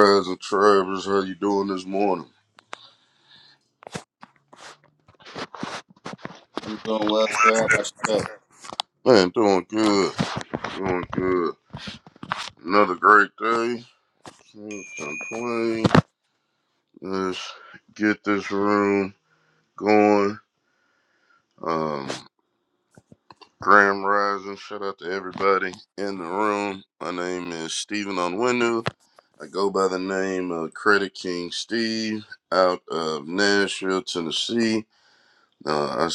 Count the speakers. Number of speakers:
2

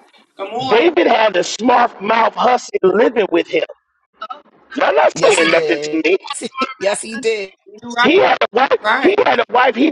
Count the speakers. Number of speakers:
3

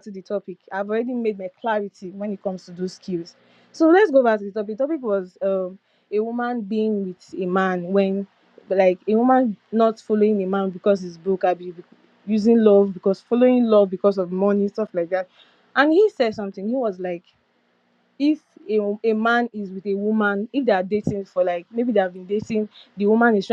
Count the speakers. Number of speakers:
1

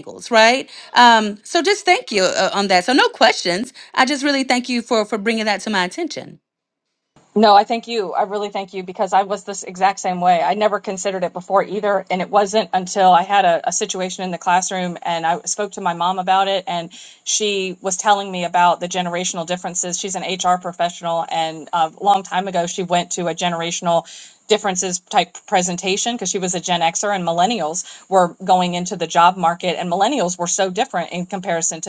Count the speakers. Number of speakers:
2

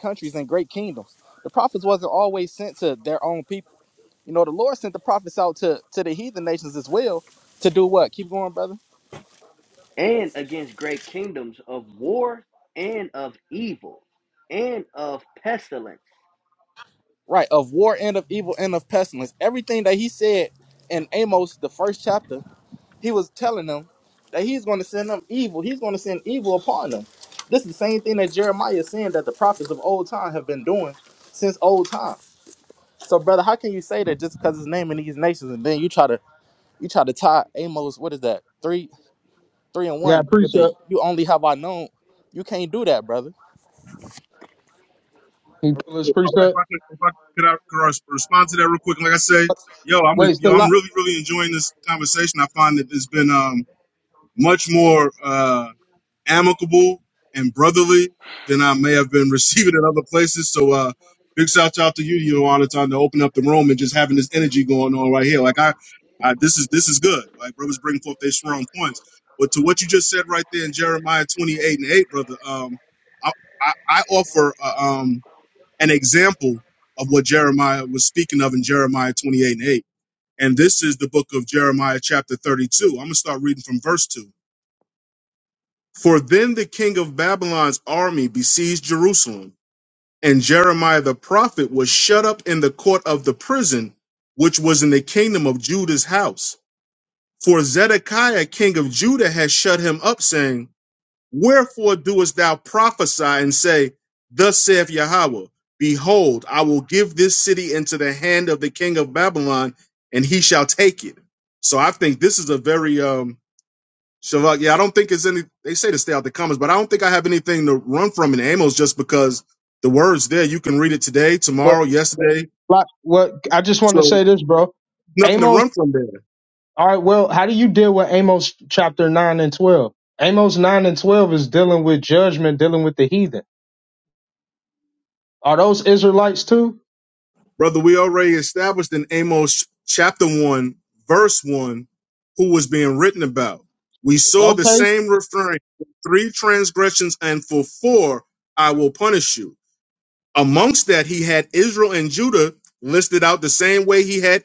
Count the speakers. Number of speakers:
4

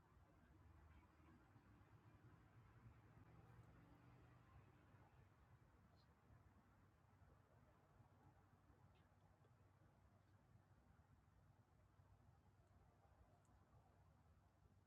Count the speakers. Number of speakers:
0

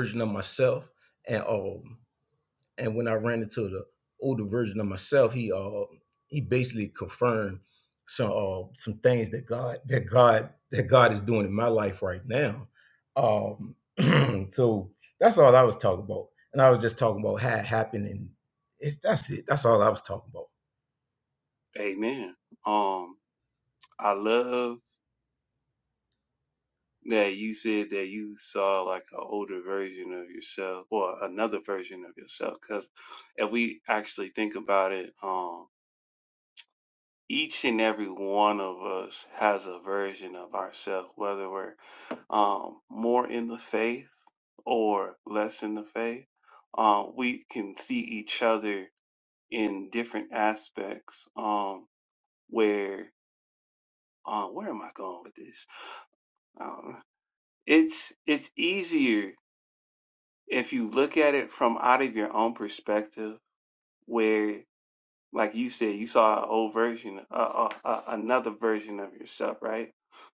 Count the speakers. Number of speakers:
2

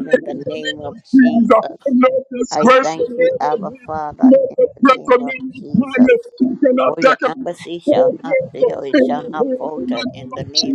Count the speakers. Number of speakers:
2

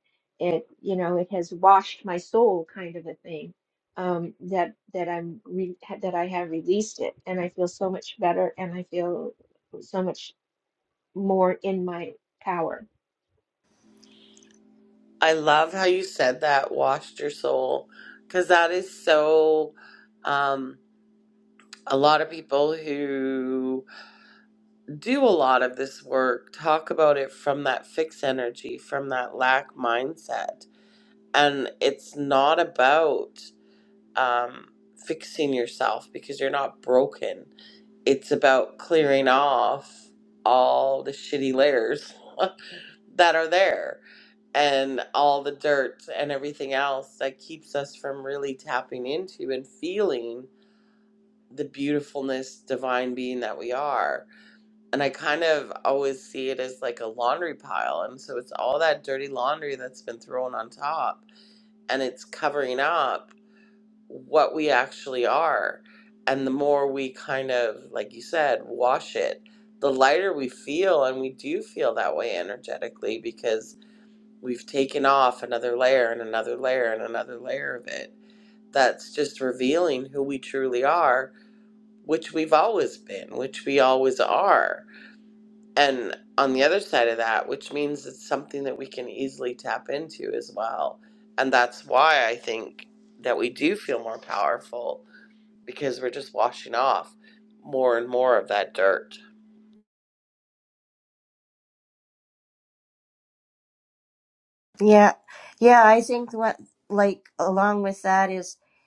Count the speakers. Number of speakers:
3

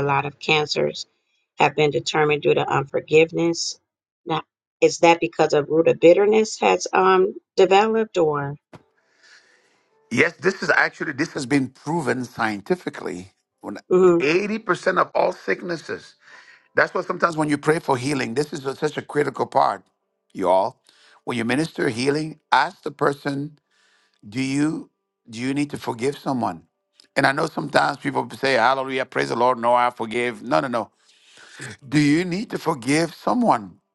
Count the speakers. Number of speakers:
2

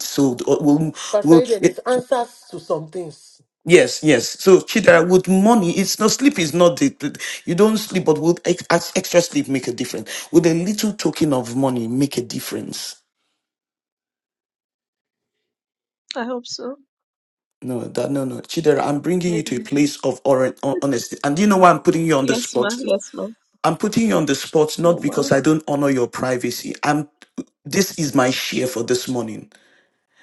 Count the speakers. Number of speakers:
3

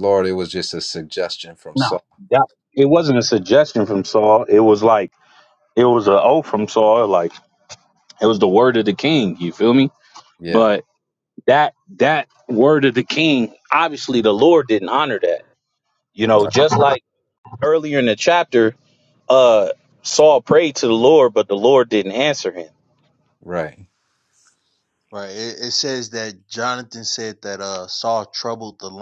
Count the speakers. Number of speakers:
3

